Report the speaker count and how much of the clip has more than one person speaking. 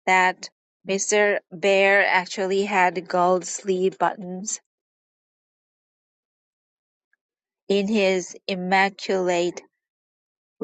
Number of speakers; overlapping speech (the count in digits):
1, no overlap